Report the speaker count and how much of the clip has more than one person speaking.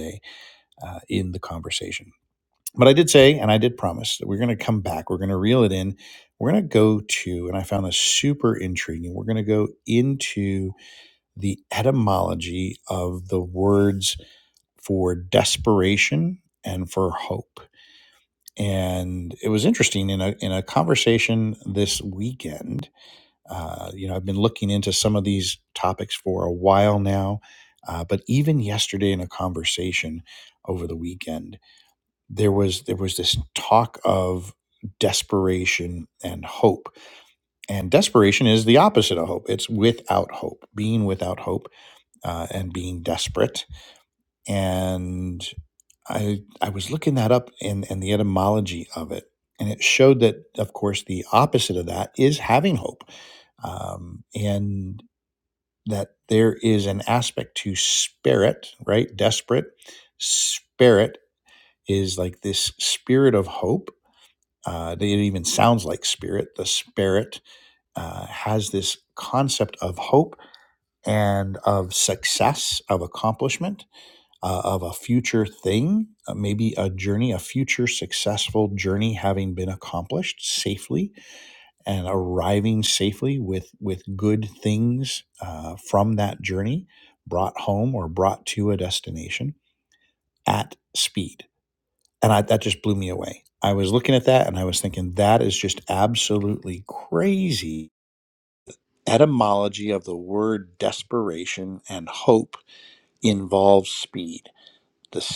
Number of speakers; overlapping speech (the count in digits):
1, no overlap